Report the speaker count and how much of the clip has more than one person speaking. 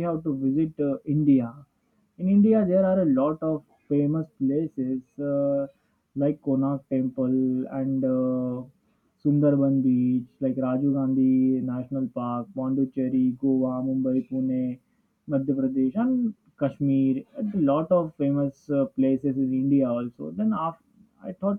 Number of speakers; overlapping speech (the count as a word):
one, no overlap